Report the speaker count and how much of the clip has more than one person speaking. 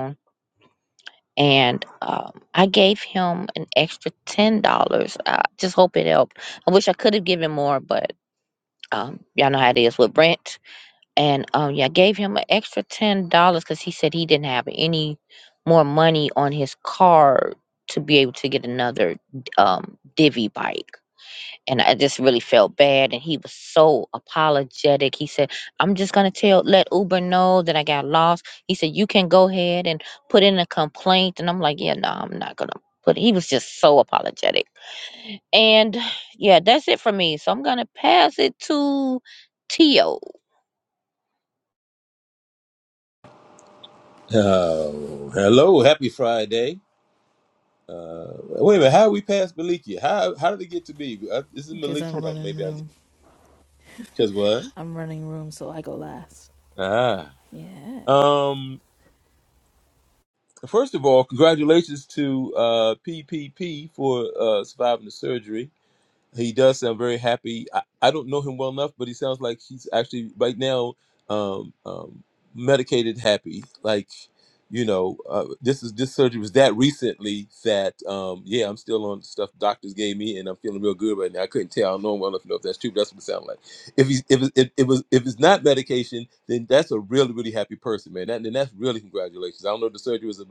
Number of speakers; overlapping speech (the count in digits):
3, about 1%